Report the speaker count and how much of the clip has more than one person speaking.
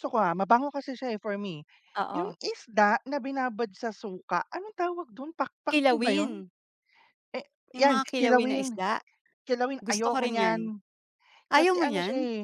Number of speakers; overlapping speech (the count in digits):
2, about 28%